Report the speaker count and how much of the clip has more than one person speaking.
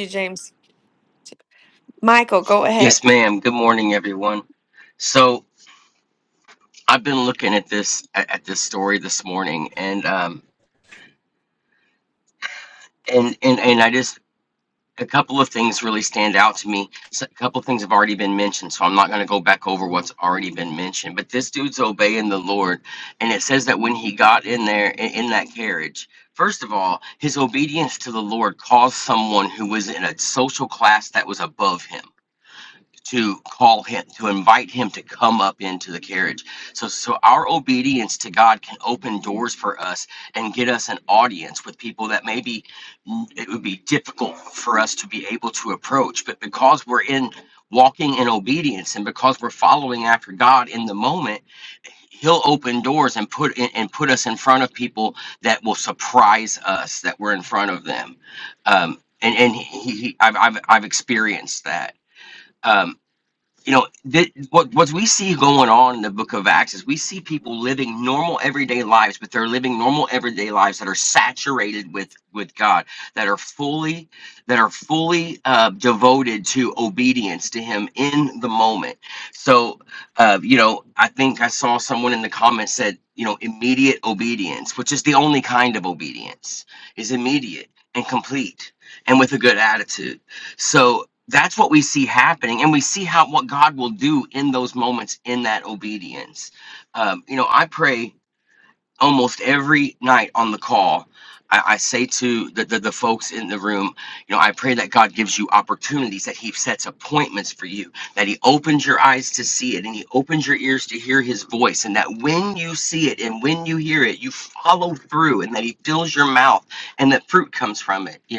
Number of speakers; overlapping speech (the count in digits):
2, under 1%